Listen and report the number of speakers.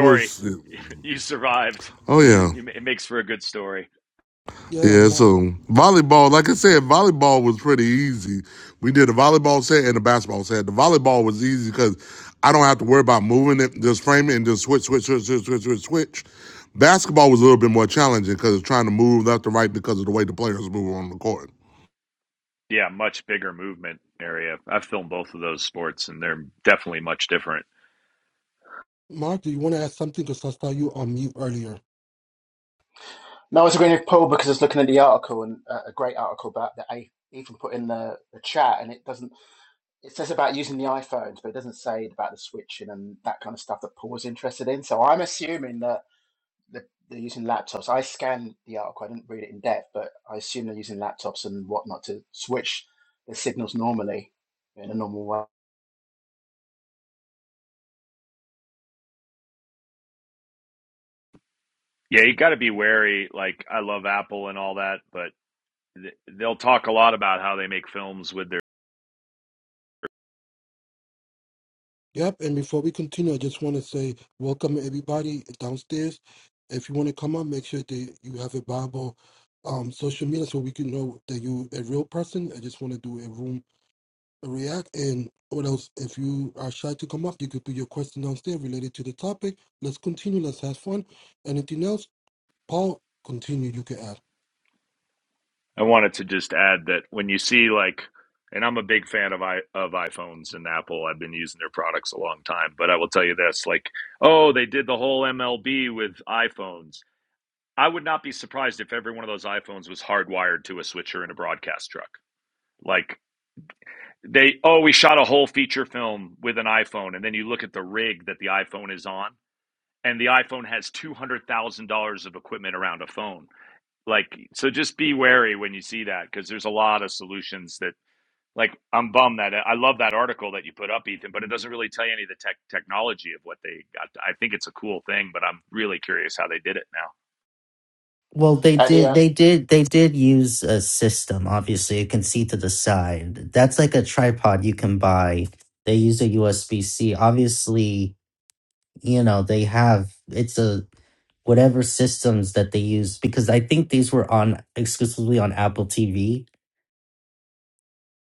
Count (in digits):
5